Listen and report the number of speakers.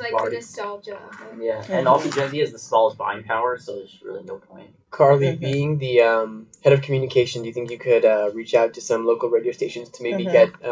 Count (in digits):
3